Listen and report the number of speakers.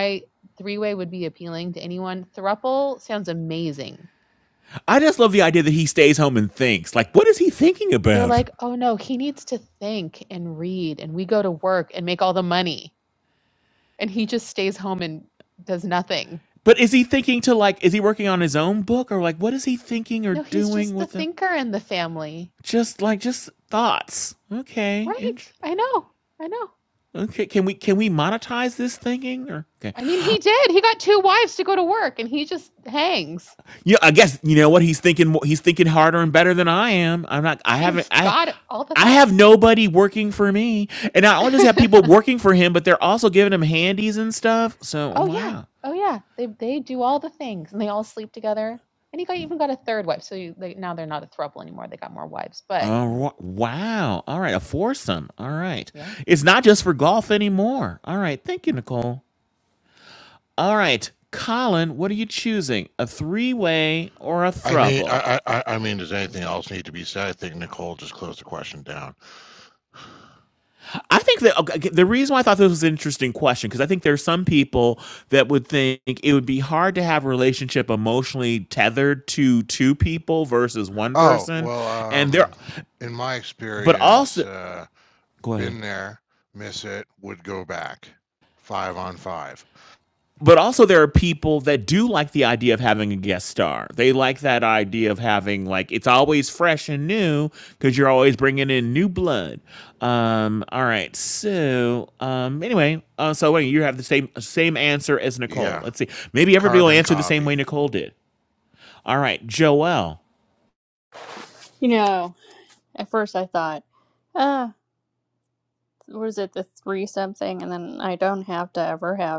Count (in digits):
4